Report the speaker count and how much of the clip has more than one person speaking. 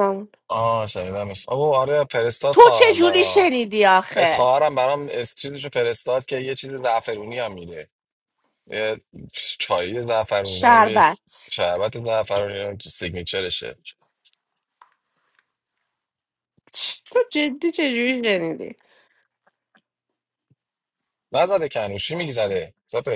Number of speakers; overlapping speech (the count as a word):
two, about 8%